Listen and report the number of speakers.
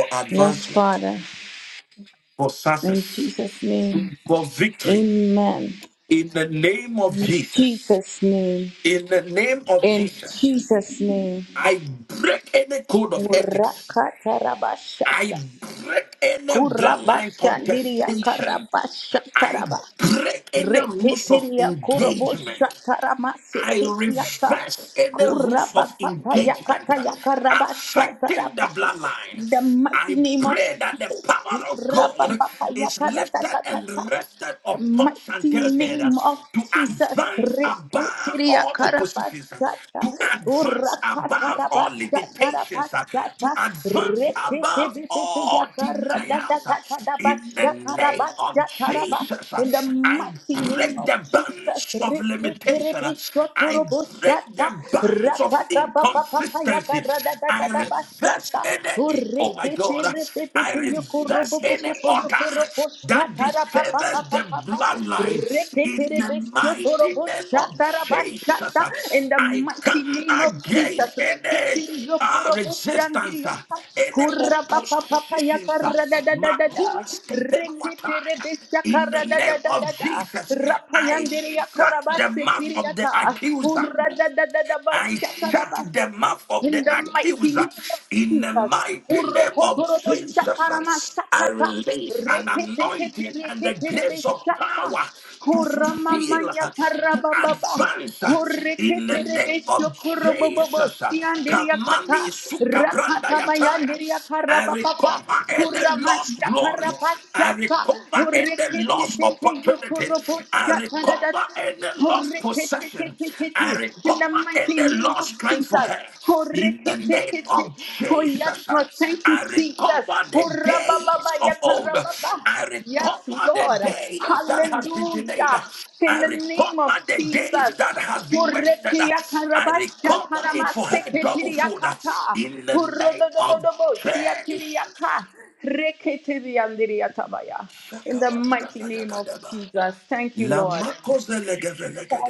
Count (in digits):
2